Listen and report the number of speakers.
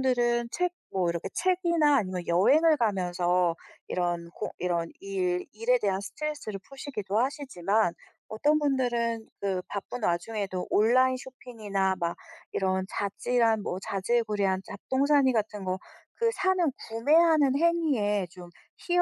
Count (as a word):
one